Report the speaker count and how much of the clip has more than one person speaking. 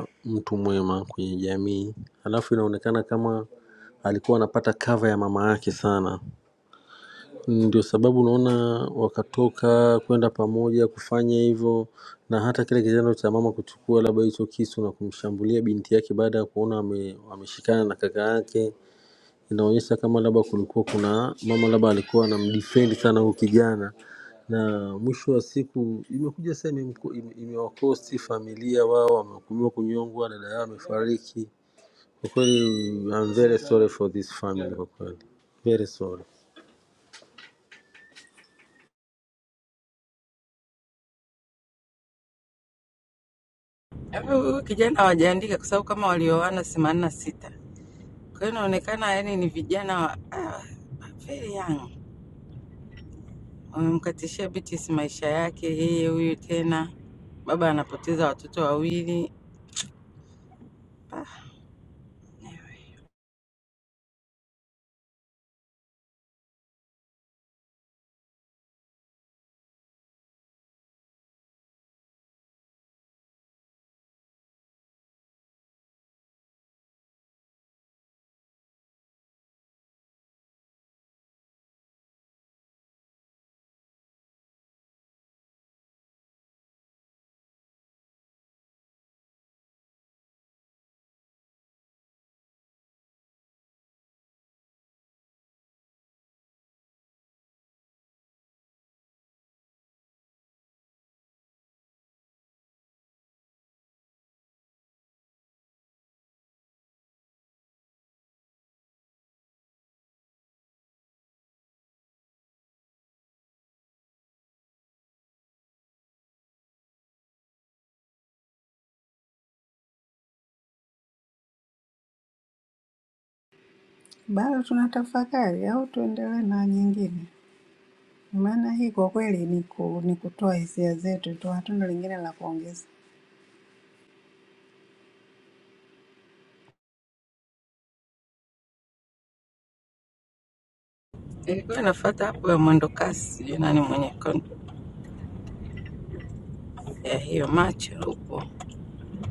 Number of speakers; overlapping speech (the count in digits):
3, no overlap